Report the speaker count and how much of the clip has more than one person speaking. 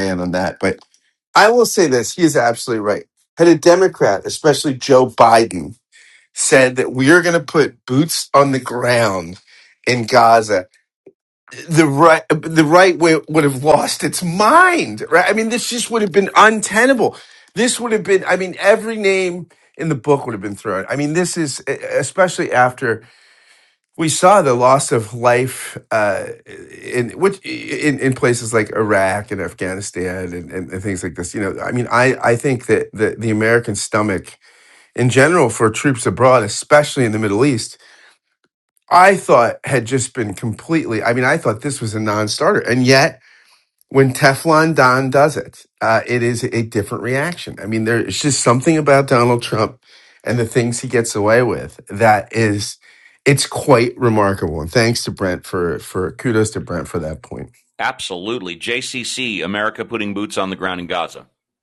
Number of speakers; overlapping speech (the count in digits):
2, no overlap